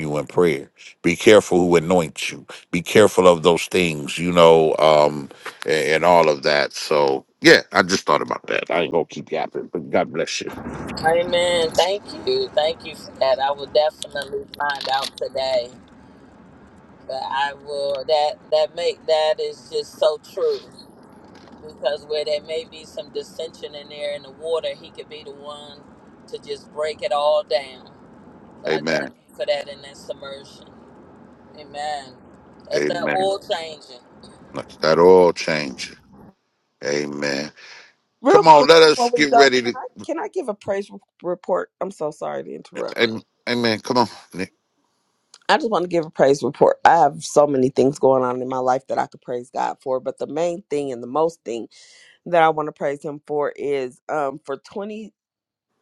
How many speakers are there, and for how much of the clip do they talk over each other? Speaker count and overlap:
3, about 4%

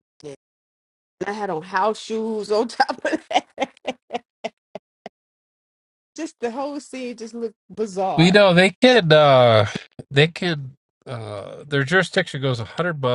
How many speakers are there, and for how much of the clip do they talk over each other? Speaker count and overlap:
2, about 2%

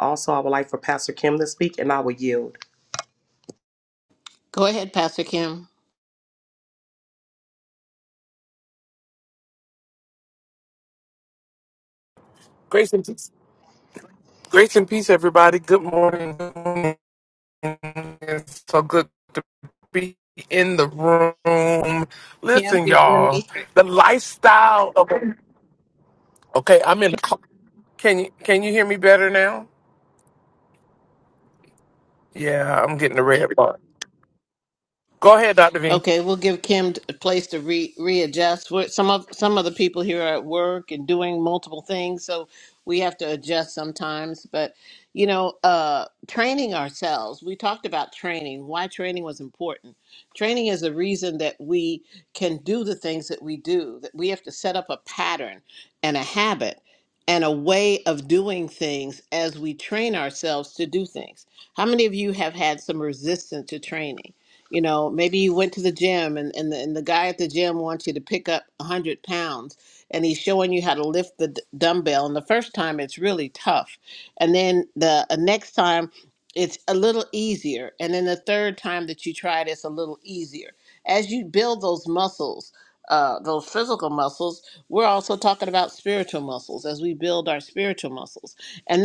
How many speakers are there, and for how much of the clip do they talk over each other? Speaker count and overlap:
3, about 1%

